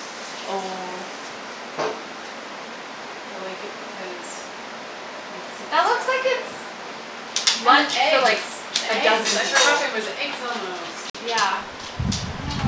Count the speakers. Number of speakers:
2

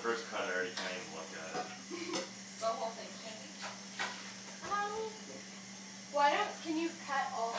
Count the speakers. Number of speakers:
3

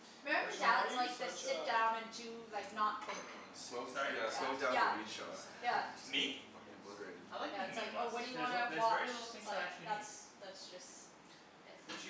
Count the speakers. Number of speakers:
4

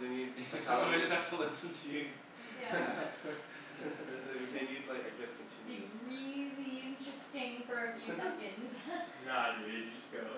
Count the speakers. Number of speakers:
4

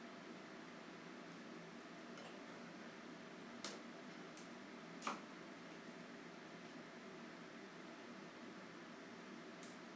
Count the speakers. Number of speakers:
0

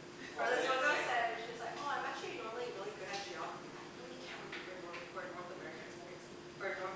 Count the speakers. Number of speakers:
1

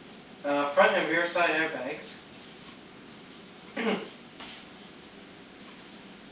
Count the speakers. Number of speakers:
1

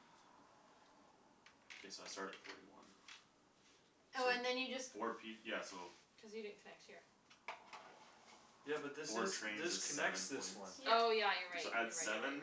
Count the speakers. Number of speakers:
4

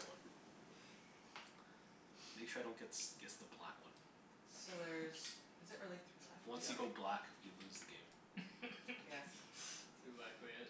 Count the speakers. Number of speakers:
3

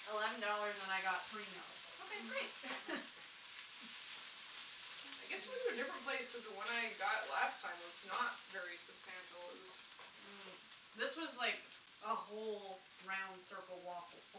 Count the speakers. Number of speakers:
2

